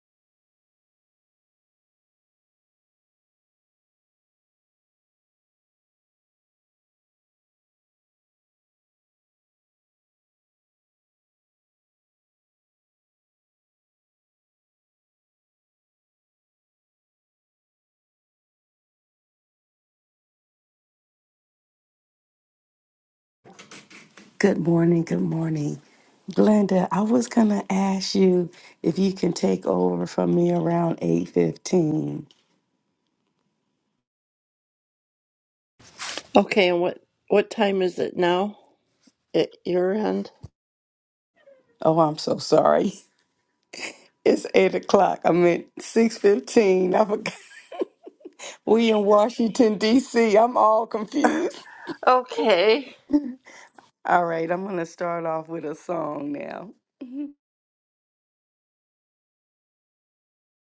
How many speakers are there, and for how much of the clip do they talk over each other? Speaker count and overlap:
two, no overlap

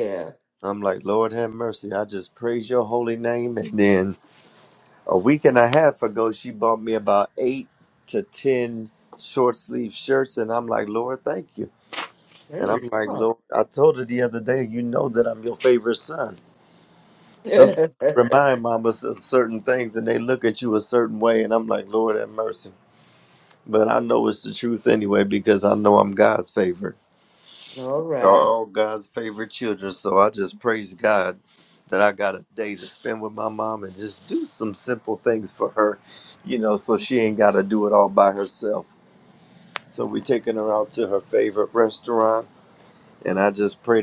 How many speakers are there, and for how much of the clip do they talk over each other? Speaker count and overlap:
two, about 2%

